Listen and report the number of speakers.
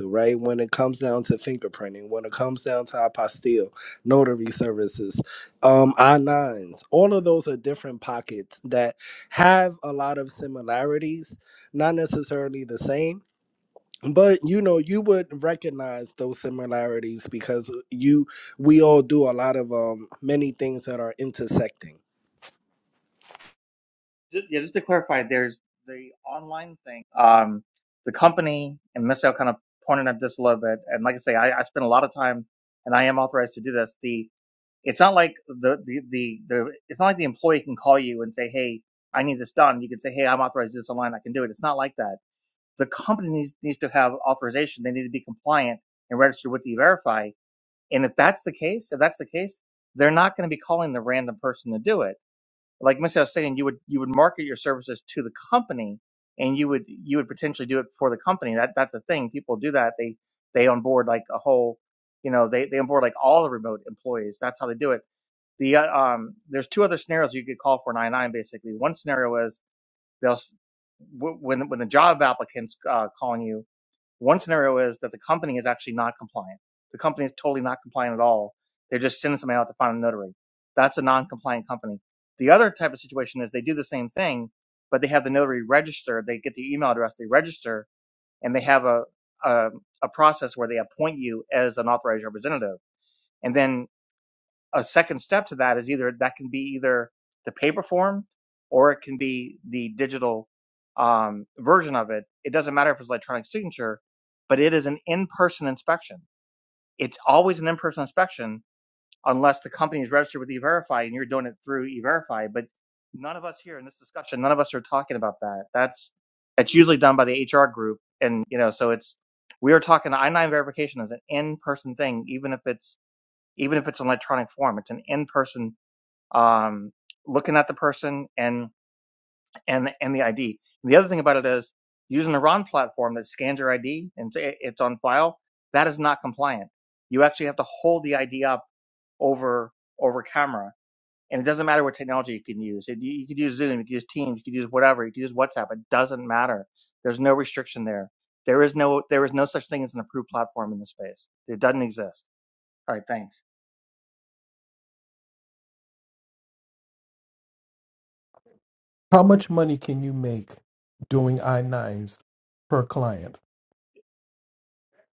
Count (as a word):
three